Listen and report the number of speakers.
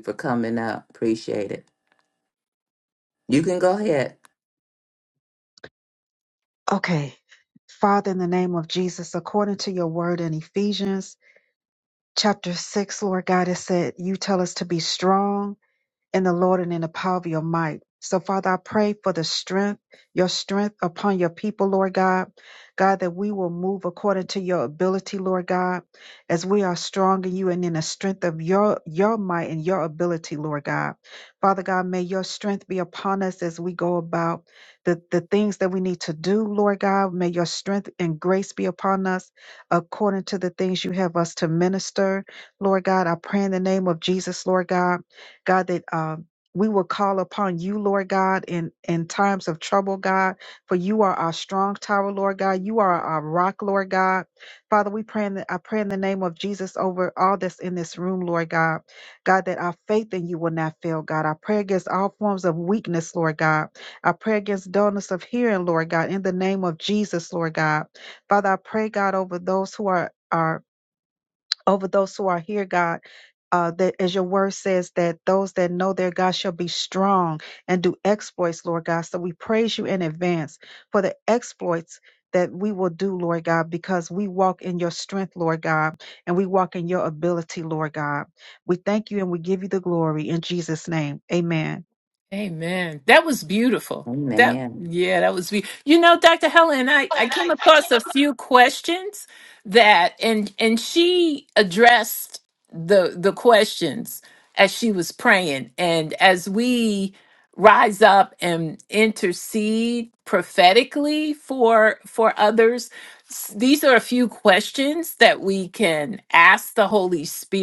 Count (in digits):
3